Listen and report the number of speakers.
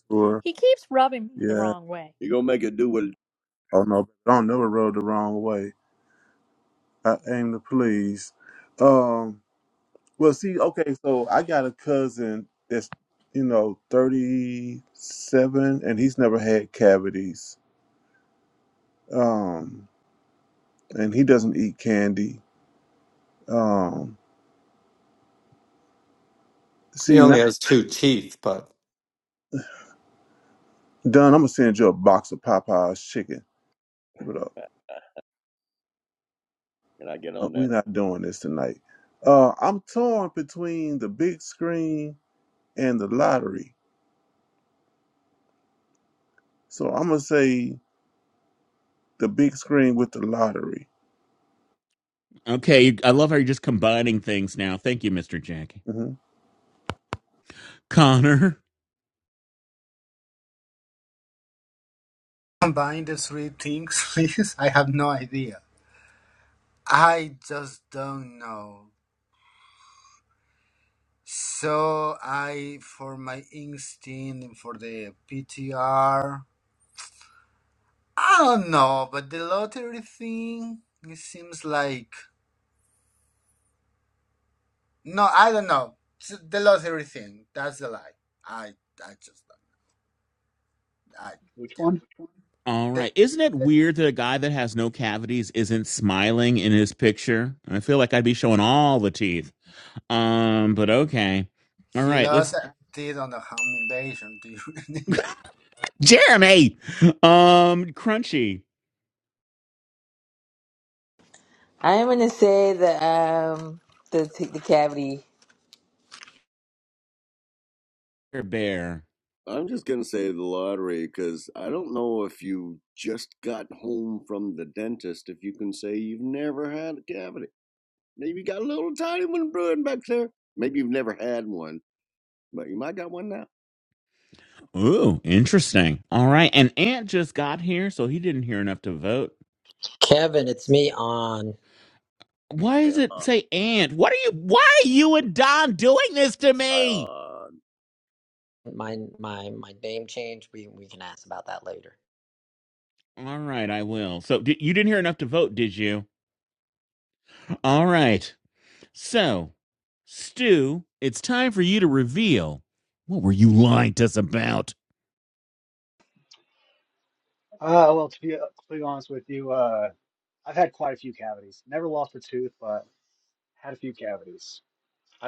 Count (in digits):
9